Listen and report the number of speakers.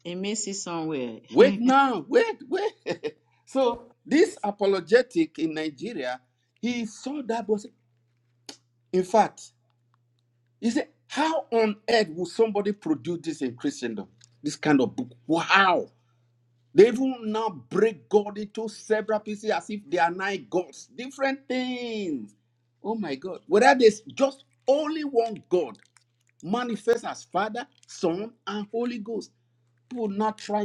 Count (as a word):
two